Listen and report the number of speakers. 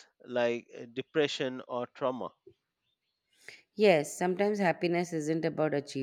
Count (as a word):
two